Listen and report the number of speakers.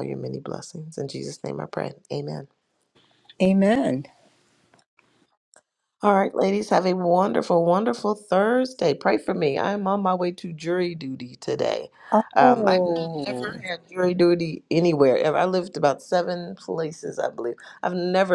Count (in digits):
2